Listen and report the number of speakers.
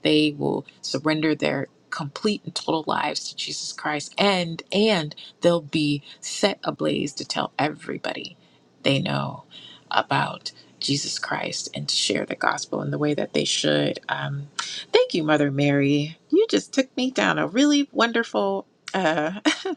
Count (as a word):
one